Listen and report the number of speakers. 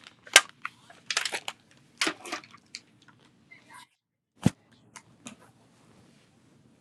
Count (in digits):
0